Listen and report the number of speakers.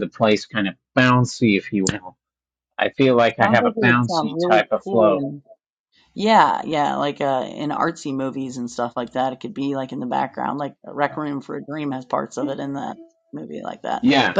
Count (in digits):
2